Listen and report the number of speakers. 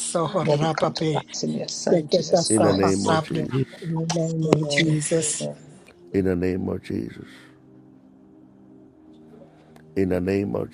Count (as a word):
three